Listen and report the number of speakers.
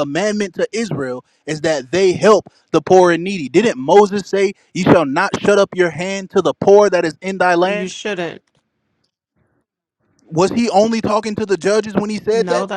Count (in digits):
2